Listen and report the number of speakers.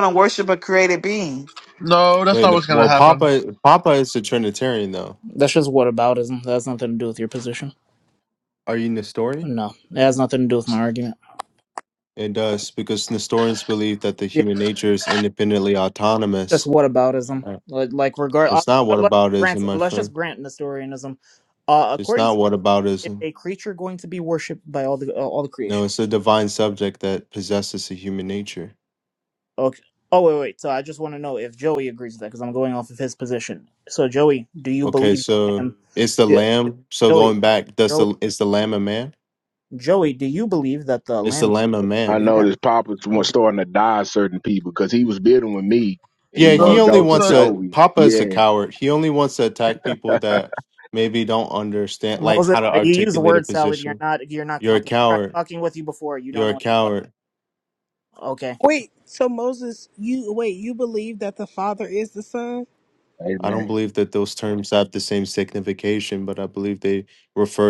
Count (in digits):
6